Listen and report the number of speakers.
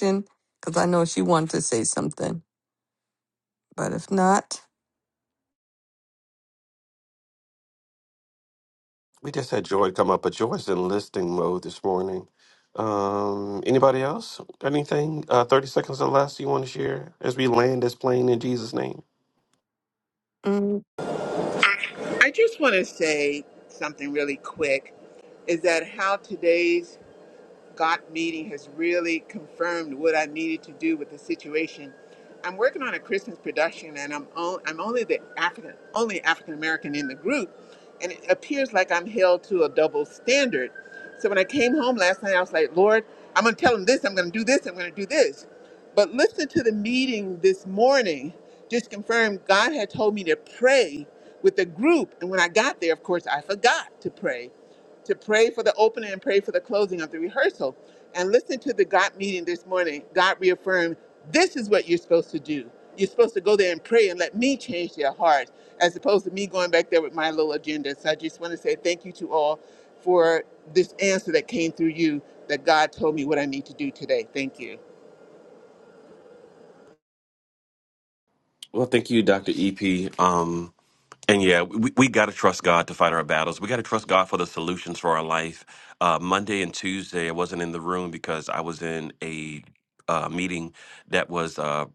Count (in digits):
3